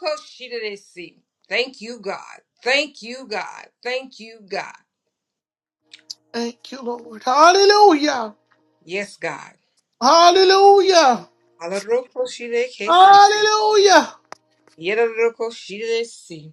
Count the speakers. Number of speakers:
two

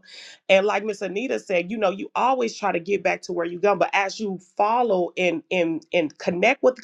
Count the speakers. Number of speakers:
one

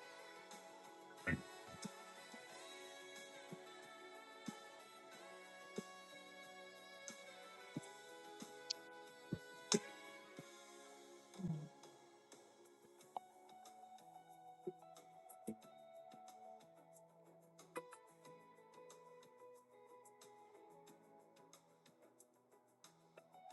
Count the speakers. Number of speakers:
zero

